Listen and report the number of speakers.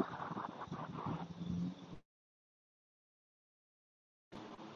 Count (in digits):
0